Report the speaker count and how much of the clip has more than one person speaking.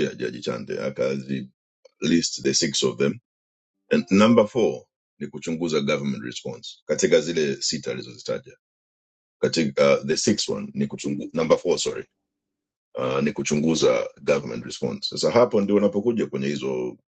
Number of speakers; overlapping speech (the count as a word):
one, no overlap